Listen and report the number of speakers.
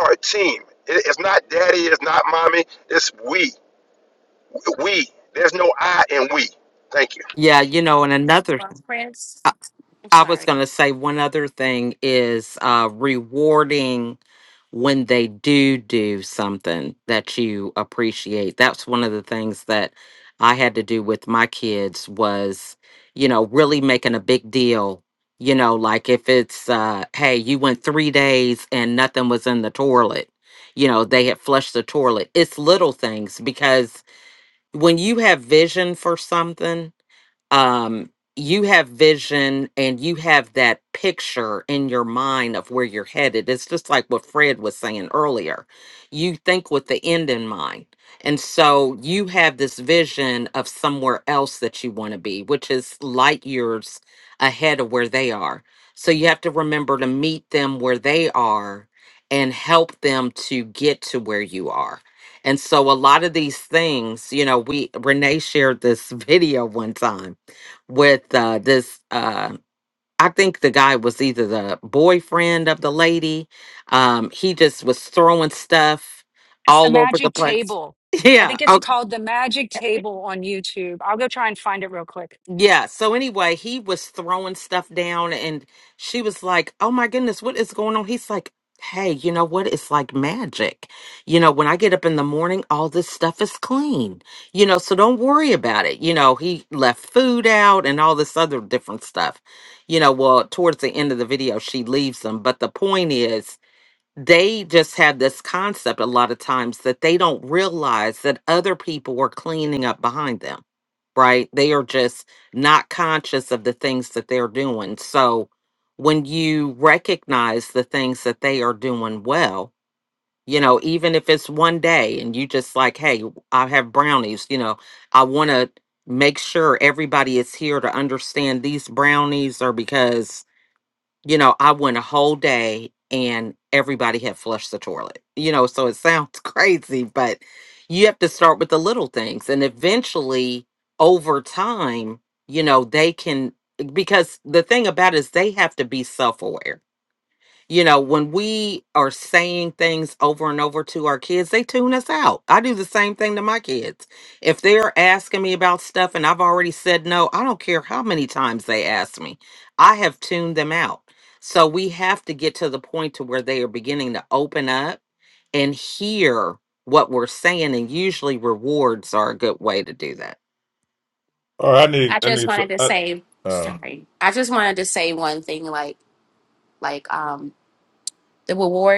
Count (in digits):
5